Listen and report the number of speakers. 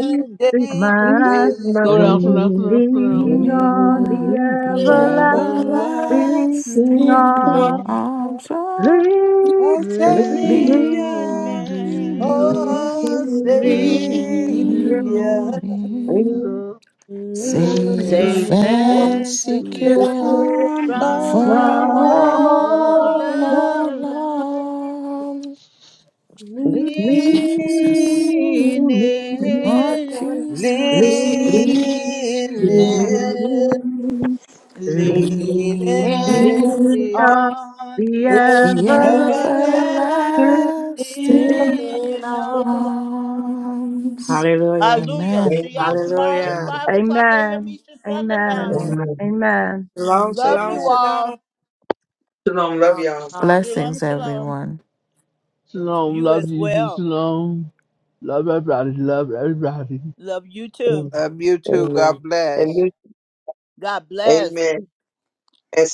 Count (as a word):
seven